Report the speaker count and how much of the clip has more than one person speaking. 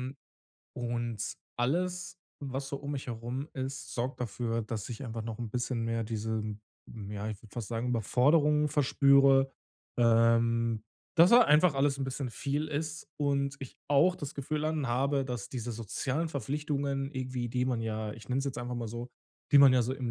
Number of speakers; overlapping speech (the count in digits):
1, no overlap